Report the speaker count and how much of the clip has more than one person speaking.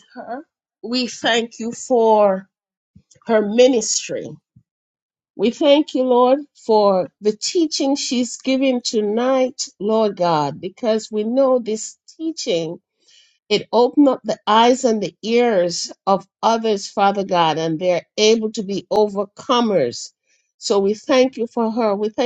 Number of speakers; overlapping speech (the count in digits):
1, no overlap